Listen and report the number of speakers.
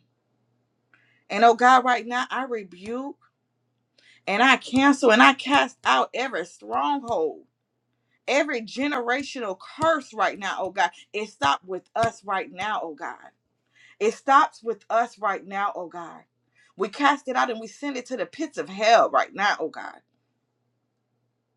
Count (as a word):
one